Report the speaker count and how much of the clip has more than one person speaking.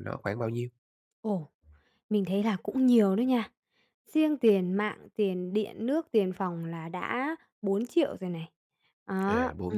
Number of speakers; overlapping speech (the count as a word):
two, about 5%